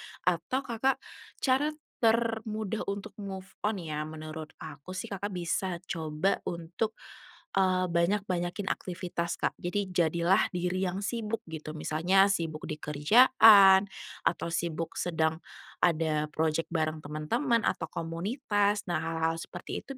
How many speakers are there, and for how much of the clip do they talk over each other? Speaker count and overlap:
one, no overlap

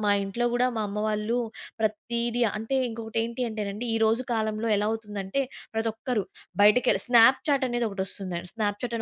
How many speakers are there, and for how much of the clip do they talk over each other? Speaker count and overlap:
one, no overlap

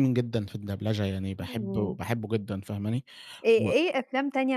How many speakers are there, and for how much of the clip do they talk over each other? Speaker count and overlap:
two, about 16%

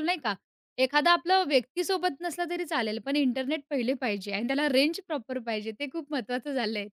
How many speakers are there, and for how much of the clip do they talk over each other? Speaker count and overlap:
one, no overlap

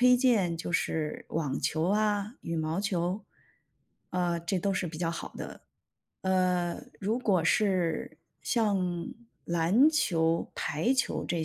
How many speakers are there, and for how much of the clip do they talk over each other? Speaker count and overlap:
one, no overlap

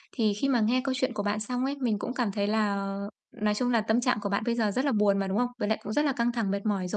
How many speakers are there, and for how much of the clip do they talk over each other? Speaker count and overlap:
one, no overlap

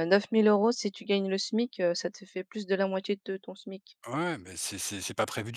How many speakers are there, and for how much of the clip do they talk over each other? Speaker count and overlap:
two, no overlap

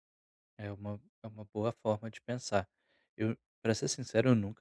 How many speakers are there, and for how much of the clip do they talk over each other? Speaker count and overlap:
one, no overlap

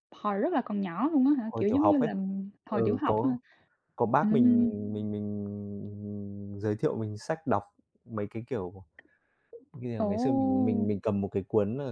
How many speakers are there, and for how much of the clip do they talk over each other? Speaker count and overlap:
two, about 22%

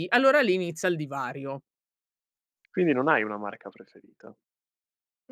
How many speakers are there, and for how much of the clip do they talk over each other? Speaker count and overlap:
two, no overlap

